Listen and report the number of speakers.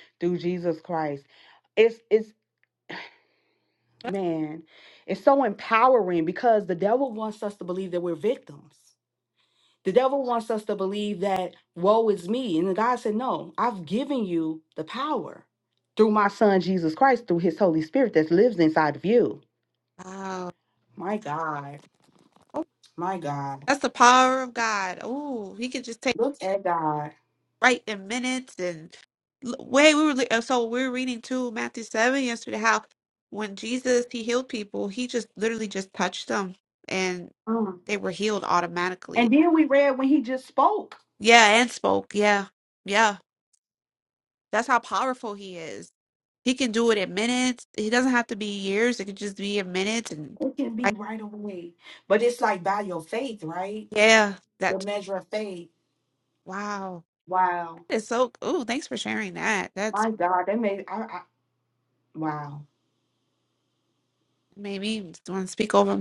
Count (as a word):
two